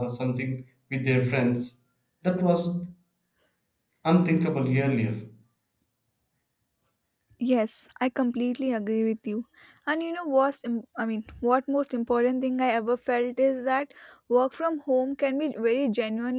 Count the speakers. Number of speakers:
2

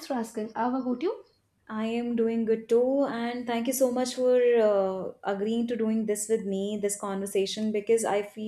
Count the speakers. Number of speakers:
2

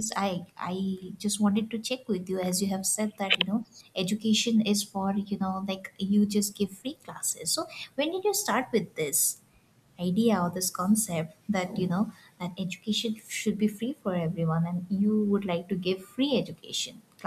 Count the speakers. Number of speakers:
1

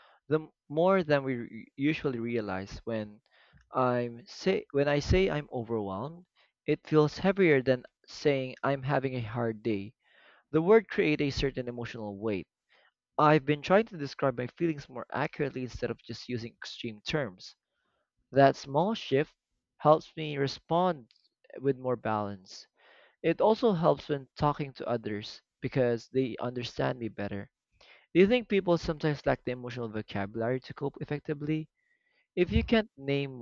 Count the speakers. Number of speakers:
1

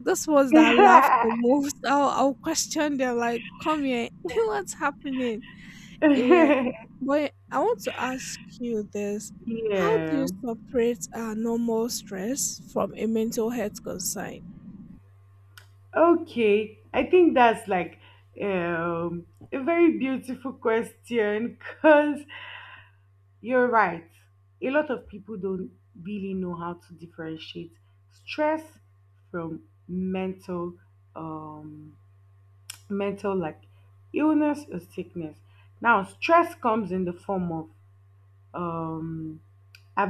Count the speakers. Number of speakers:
2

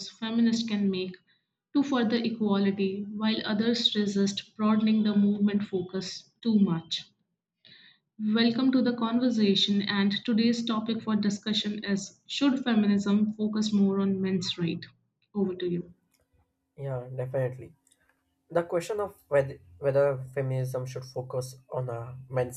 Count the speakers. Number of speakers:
2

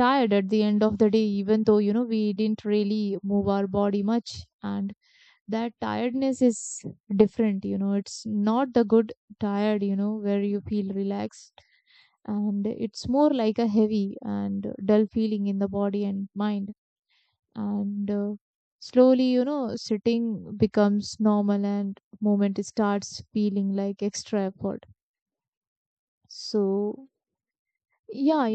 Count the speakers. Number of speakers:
1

